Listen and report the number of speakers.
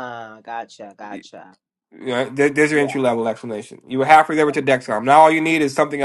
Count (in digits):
2